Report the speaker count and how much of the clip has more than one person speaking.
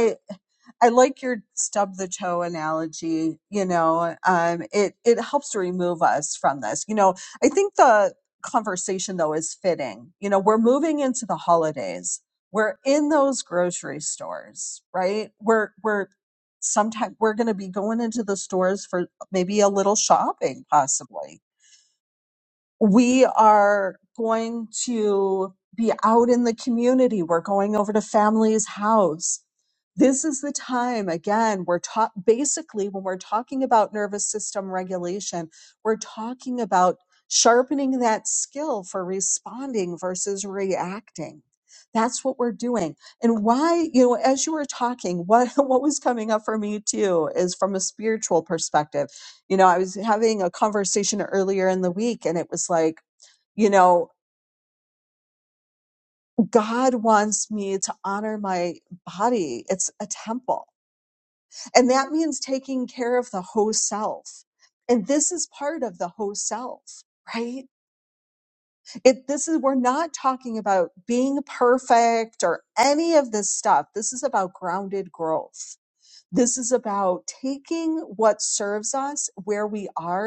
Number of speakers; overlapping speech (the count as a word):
one, no overlap